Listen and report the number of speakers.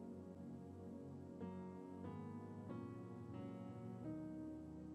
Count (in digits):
0